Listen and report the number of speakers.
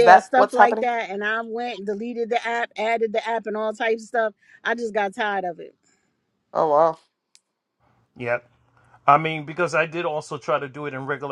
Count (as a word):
three